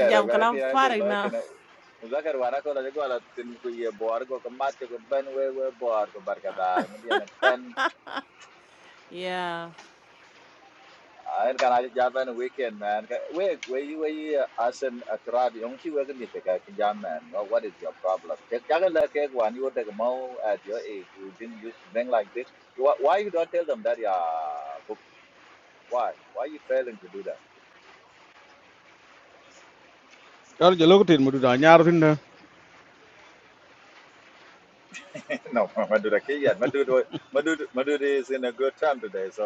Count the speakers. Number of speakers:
3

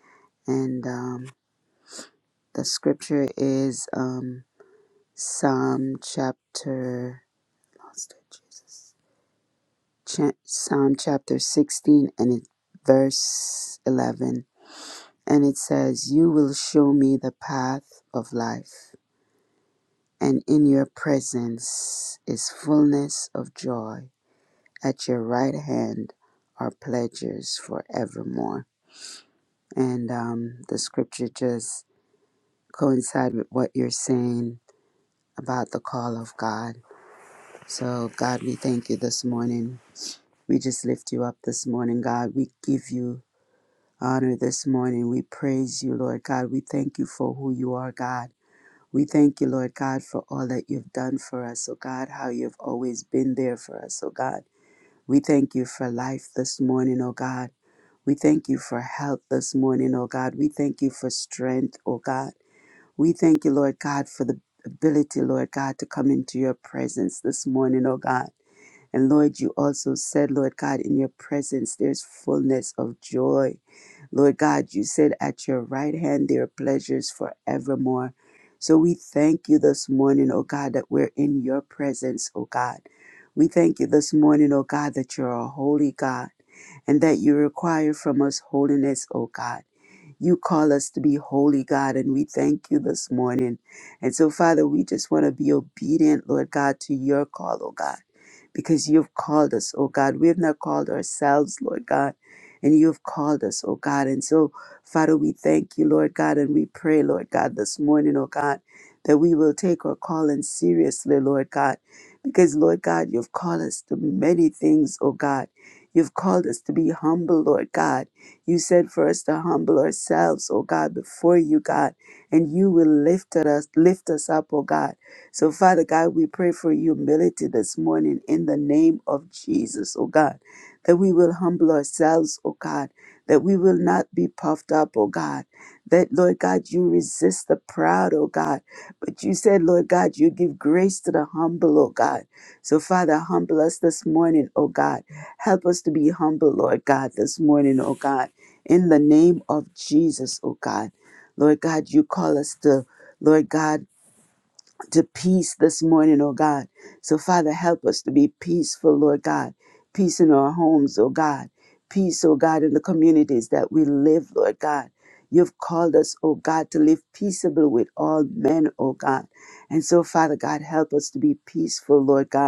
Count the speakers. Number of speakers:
1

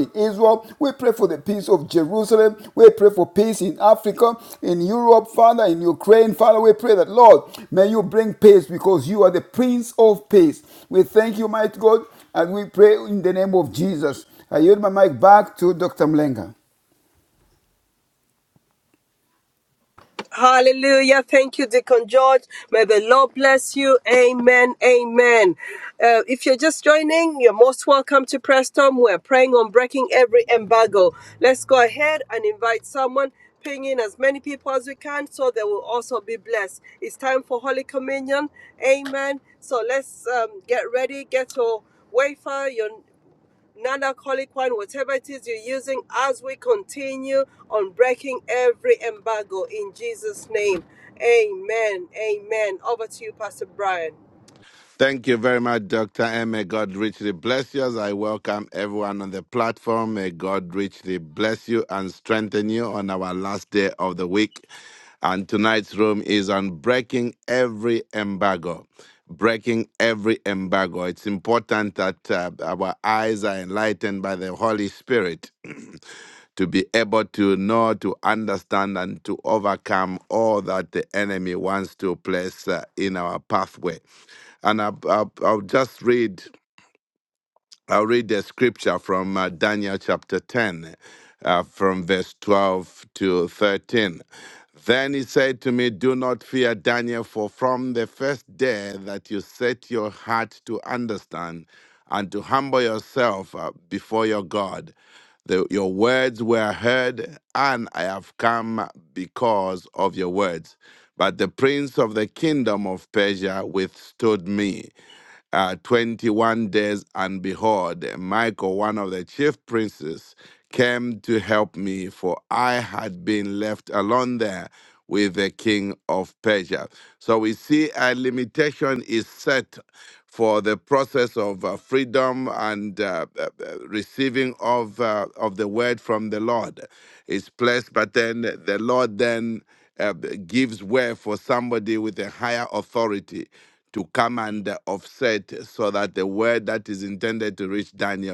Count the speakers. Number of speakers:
3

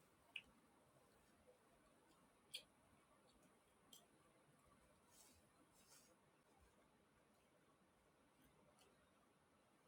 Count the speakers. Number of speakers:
0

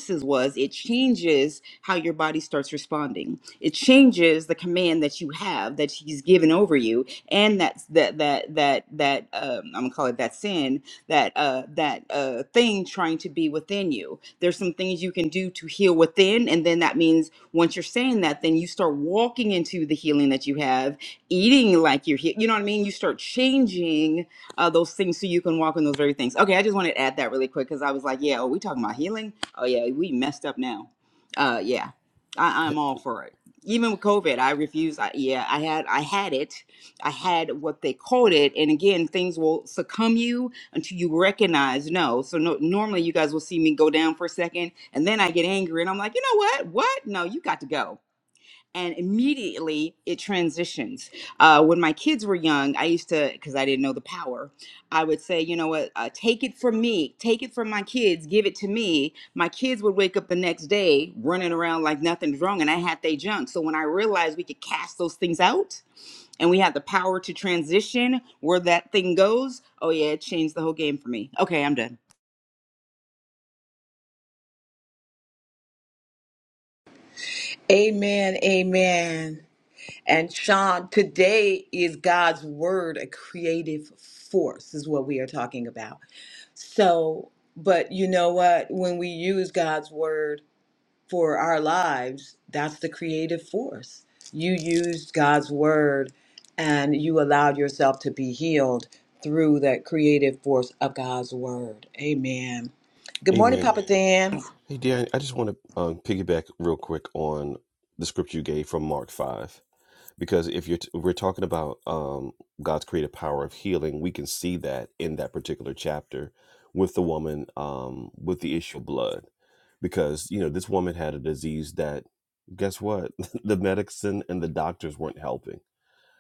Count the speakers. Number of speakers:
3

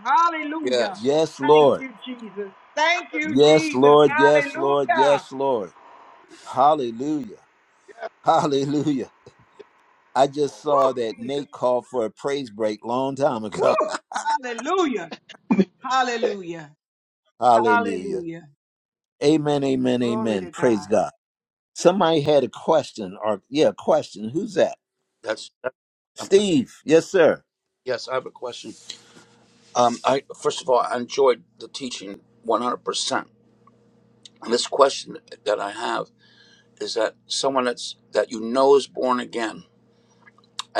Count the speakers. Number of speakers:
3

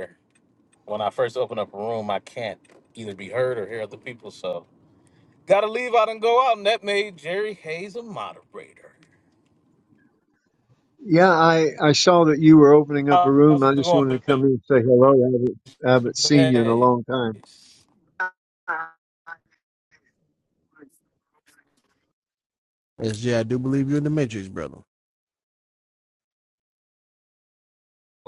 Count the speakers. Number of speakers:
3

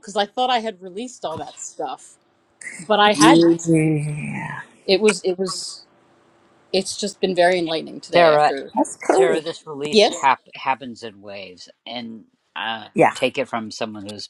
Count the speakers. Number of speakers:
3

